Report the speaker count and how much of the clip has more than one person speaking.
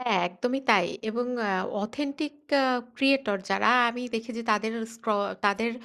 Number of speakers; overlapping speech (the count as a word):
one, no overlap